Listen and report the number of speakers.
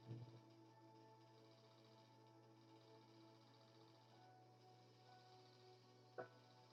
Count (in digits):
0